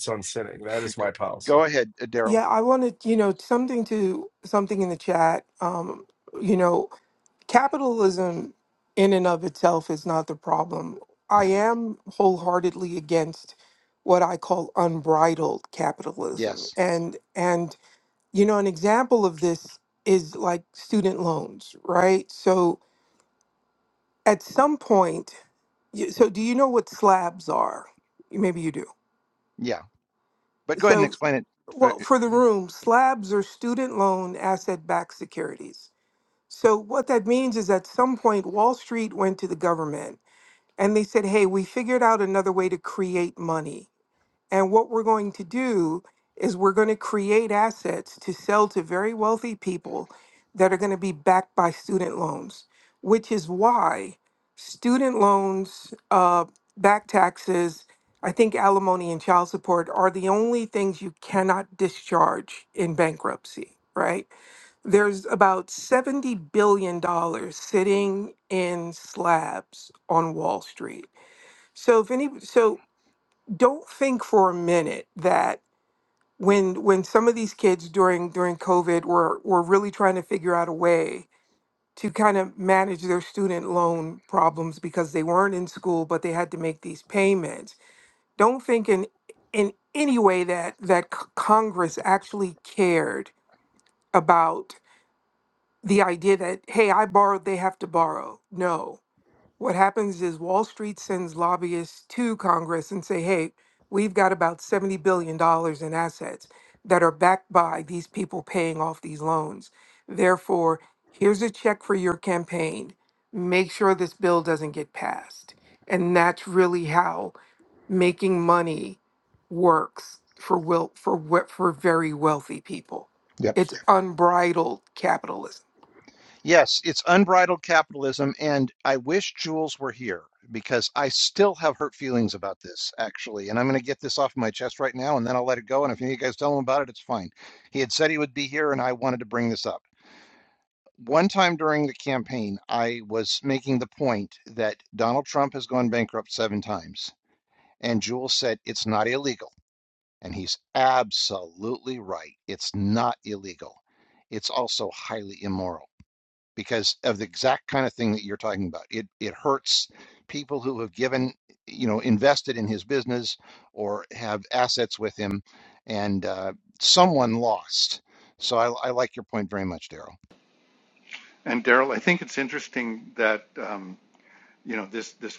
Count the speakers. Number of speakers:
4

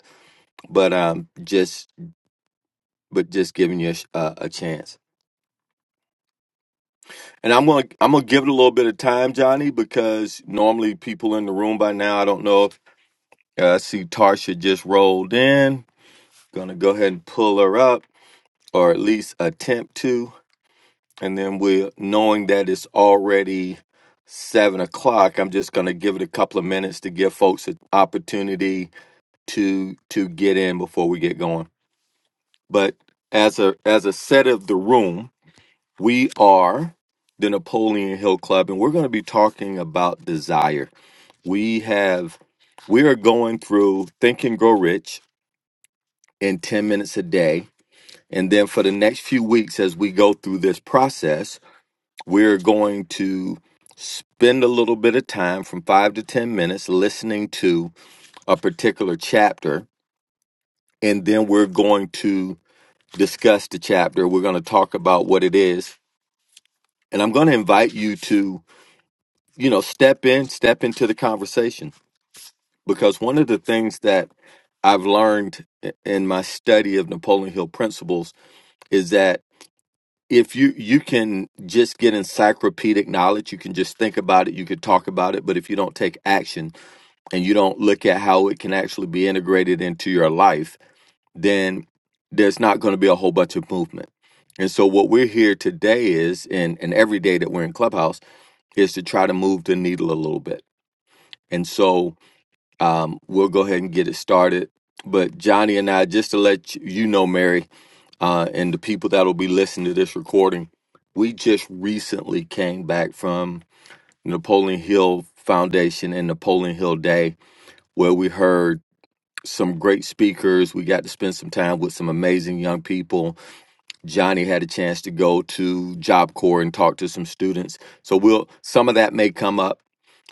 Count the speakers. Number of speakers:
1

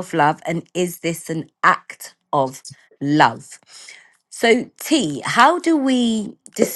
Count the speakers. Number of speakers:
1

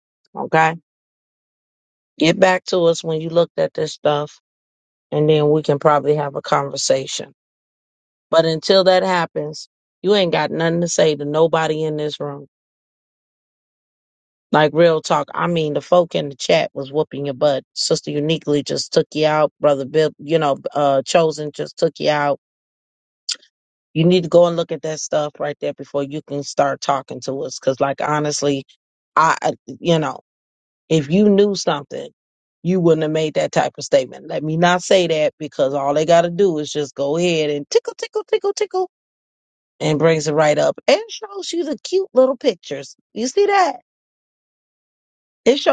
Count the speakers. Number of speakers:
1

